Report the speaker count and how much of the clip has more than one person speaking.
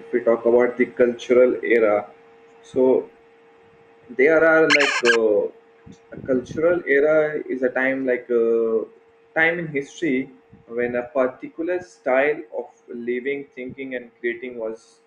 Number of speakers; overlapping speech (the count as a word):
one, no overlap